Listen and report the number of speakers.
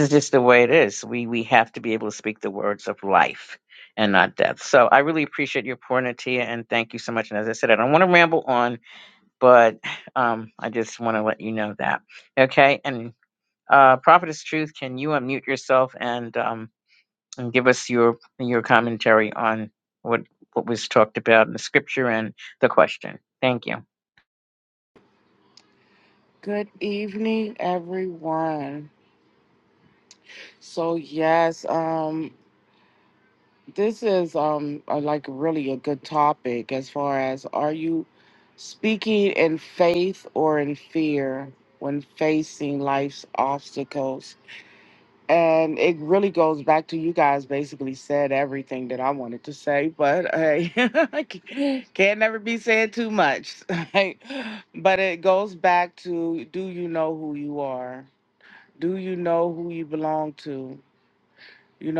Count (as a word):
two